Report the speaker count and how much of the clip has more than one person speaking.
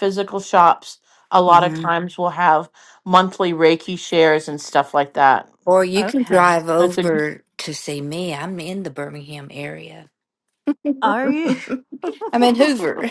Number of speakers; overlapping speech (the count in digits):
3, about 16%